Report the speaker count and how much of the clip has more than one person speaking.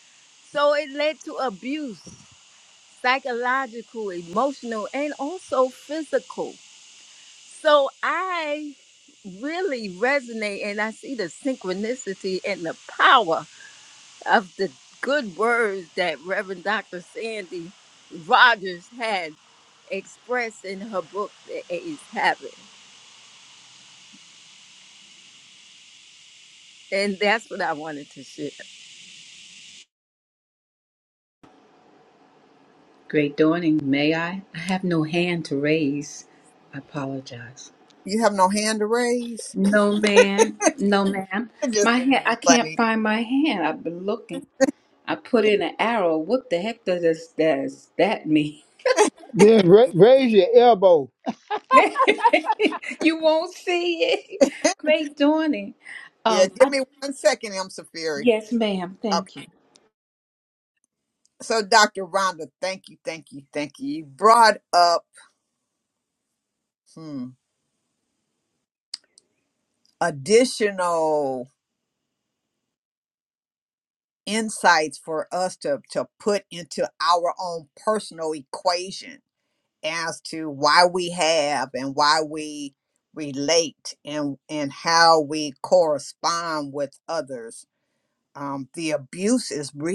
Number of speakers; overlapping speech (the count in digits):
4, about 1%